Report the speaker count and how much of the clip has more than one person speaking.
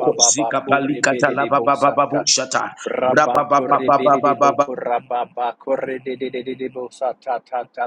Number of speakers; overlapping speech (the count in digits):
2, about 38%